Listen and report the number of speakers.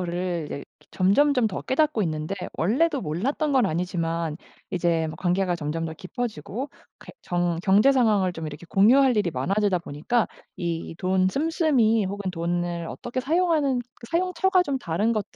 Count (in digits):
1